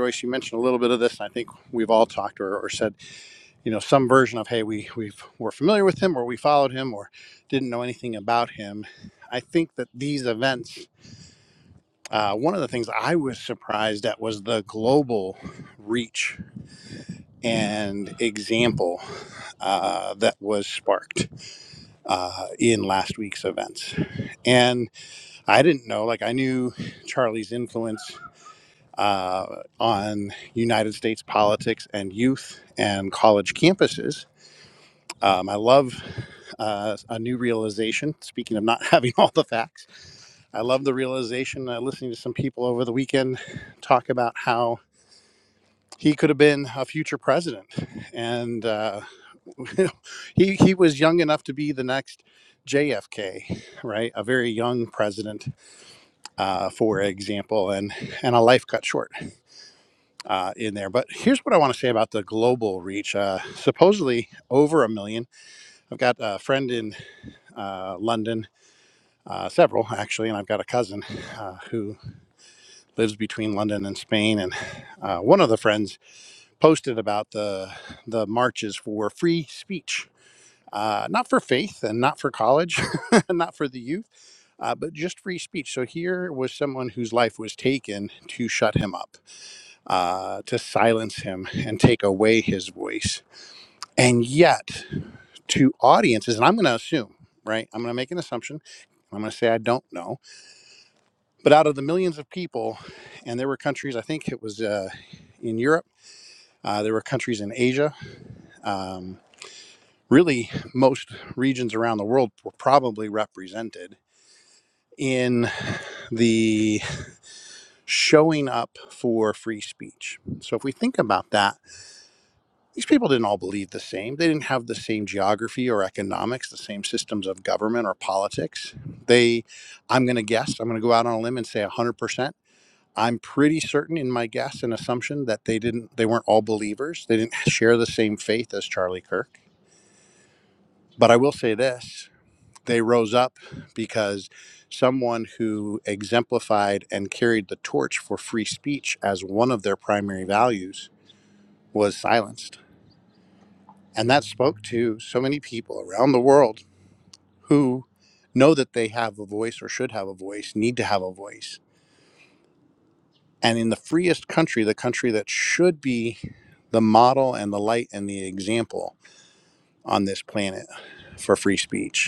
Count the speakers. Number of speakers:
1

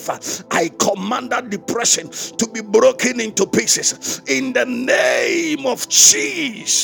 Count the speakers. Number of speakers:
1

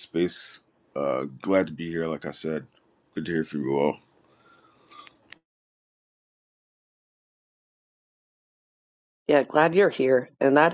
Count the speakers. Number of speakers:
2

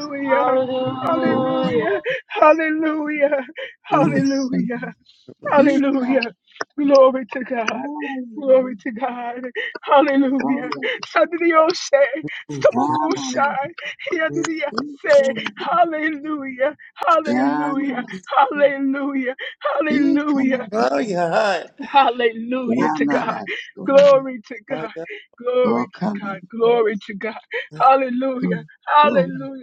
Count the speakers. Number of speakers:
4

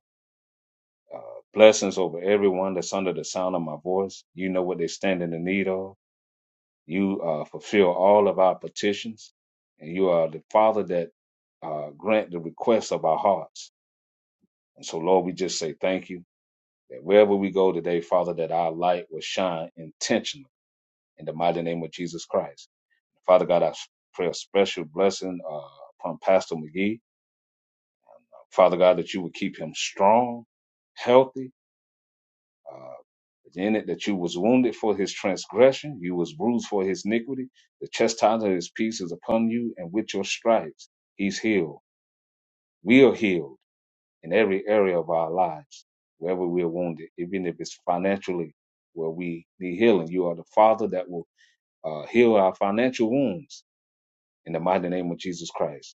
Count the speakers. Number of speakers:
1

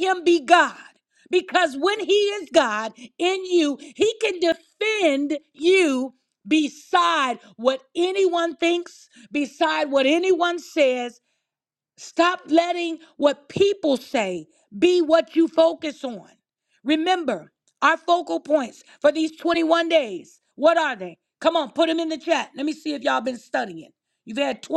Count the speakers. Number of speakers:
1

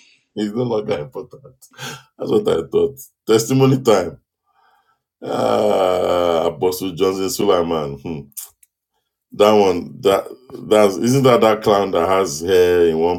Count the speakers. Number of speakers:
1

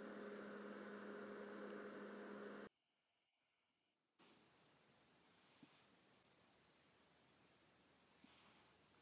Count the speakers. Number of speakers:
0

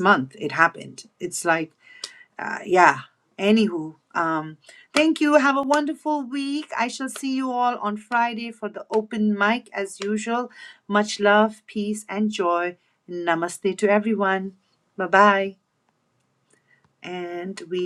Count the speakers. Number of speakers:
1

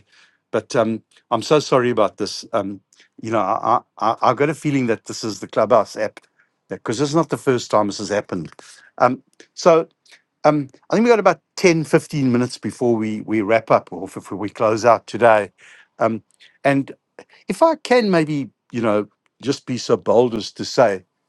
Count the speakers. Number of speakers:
1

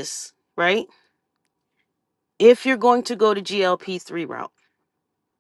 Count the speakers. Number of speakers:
1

